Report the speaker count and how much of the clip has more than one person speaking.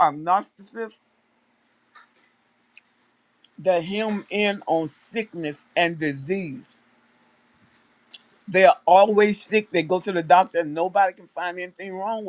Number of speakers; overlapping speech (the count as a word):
one, no overlap